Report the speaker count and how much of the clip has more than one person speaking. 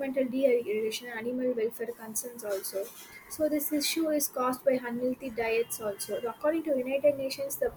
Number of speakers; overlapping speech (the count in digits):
1, no overlap